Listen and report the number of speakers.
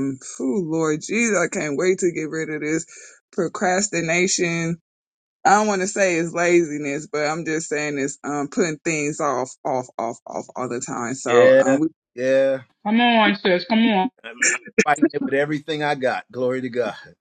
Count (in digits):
3